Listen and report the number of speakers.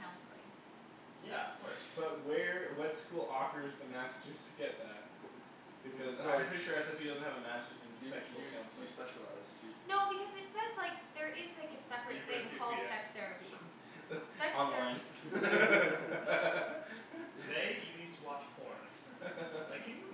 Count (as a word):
four